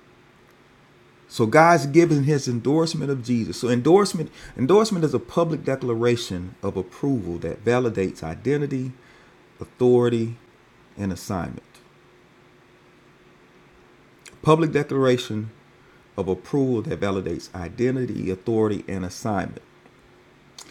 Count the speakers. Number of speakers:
one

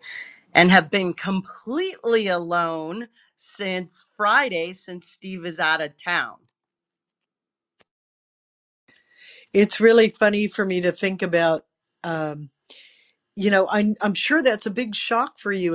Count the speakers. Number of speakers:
two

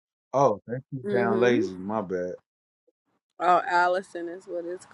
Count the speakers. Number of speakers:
two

